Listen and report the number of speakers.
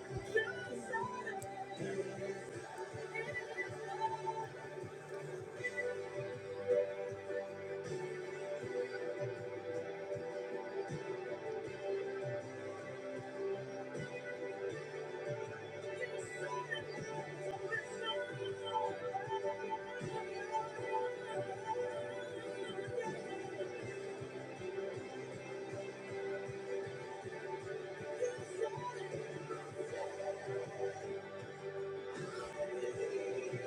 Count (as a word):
zero